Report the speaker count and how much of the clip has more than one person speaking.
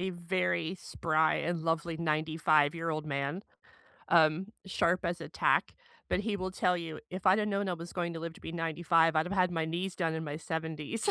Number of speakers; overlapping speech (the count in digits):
1, no overlap